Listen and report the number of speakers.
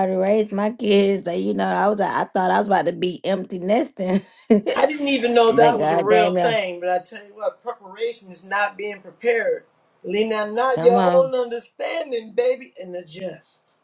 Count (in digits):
2